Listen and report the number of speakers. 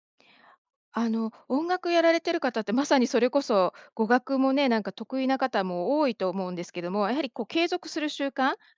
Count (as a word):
one